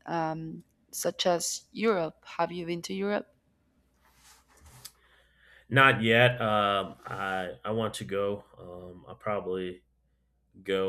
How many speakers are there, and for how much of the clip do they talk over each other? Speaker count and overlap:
2, no overlap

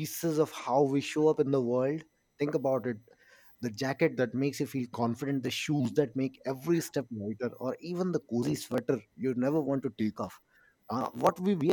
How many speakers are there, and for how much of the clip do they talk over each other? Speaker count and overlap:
1, no overlap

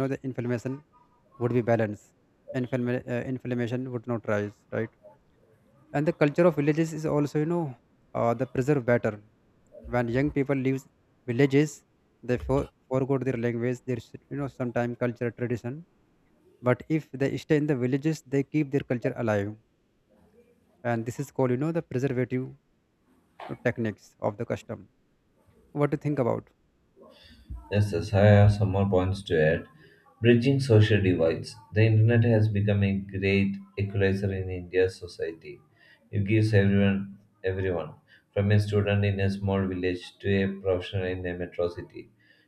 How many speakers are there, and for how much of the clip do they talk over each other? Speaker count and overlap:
2, no overlap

